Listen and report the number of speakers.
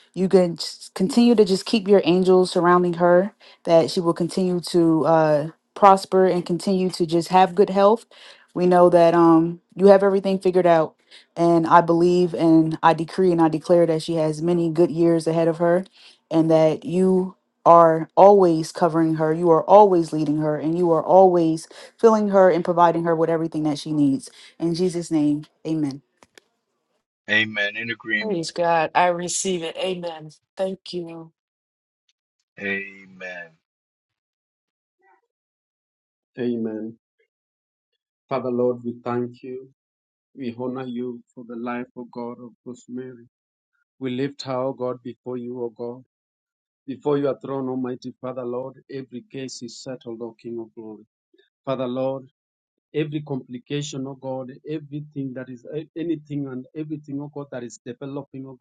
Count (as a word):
four